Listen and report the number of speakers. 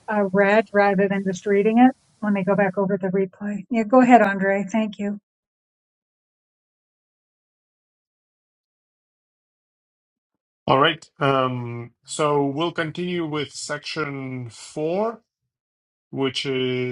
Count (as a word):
two